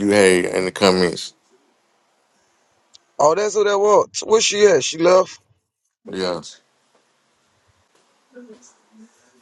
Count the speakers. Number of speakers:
2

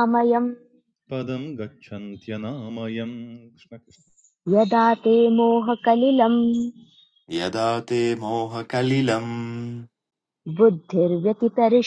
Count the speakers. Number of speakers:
3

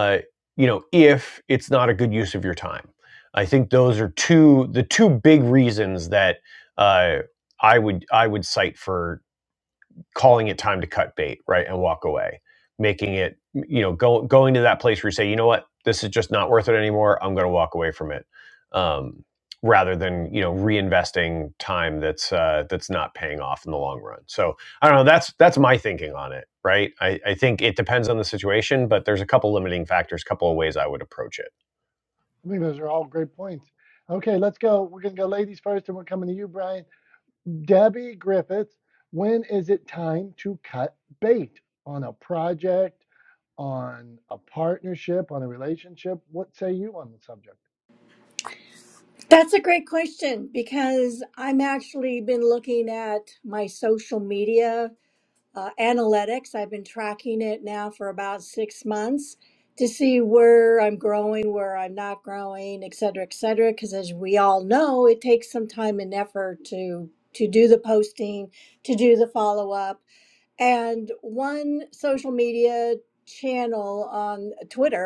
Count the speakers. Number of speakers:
3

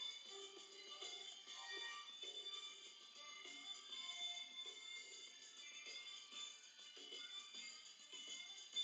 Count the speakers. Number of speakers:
0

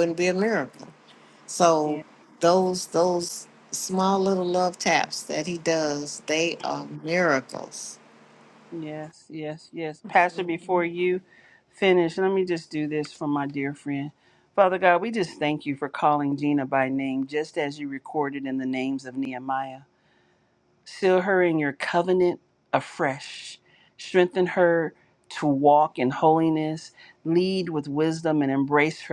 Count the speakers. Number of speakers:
2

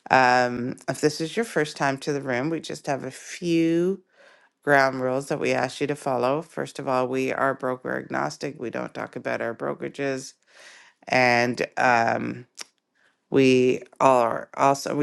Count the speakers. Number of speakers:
1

